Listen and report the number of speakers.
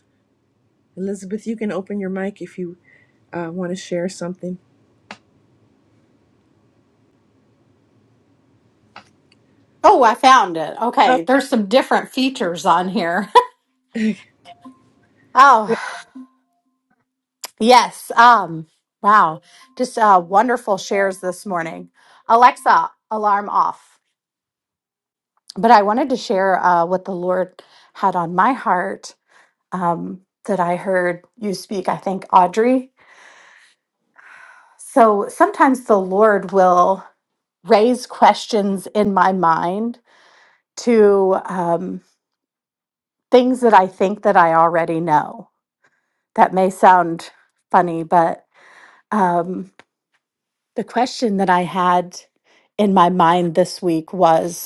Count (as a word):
two